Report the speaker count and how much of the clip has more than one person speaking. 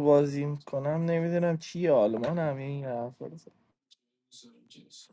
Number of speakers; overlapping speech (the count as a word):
one, no overlap